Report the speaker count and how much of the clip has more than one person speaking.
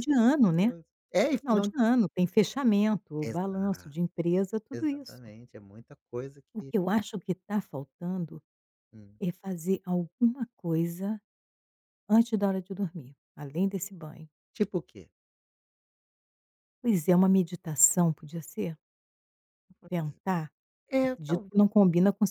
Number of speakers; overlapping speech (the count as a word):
two, about 9%